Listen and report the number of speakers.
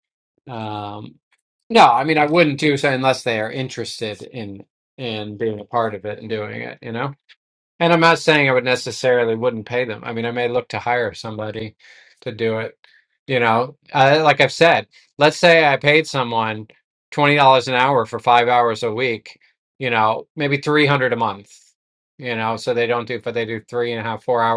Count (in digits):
1